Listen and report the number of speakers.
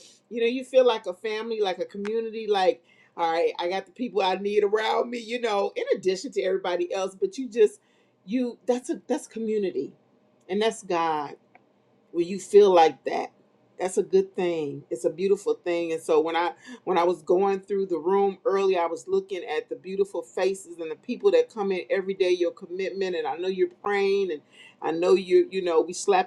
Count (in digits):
1